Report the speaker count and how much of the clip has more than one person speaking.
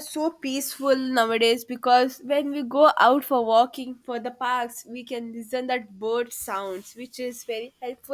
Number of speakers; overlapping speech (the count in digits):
1, no overlap